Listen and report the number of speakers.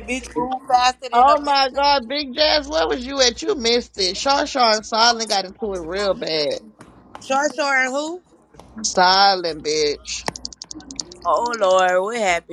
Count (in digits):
2